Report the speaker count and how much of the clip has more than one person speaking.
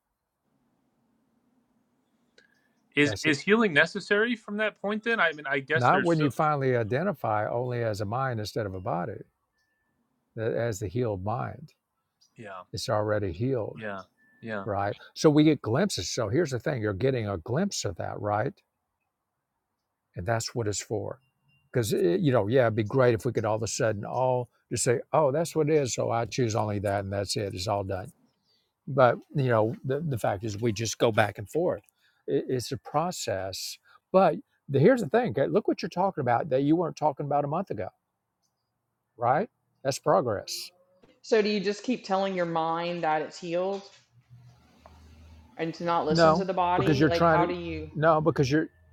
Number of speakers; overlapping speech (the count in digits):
3, about 4%